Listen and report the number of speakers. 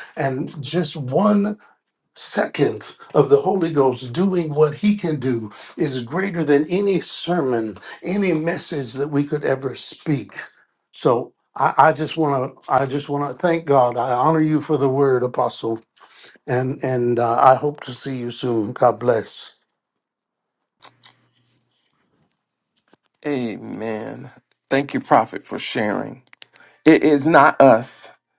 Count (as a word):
two